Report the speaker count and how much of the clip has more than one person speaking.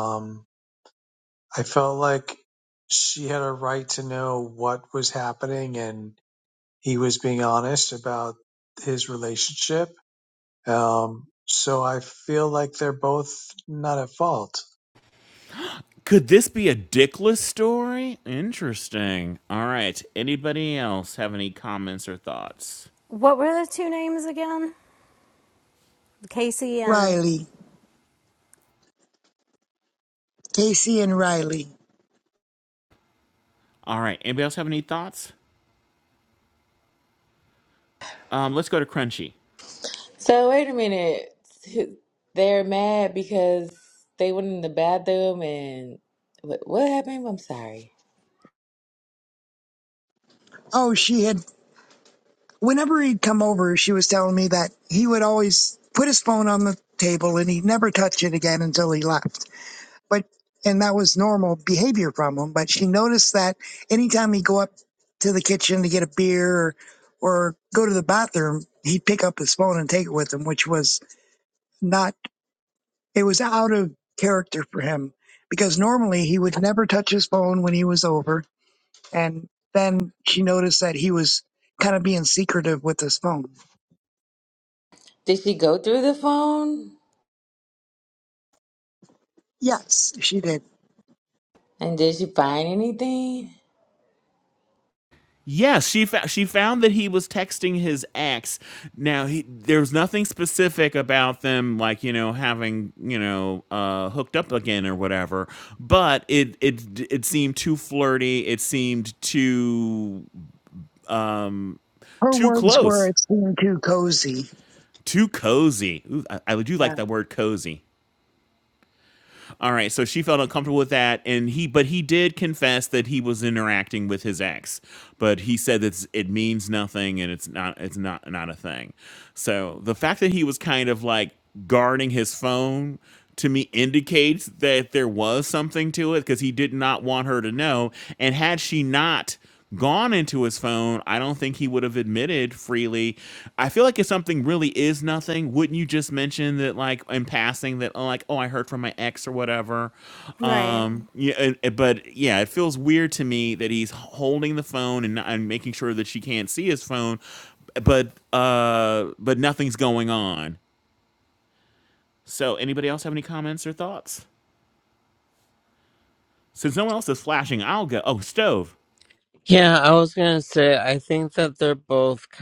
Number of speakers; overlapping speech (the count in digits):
6, about 1%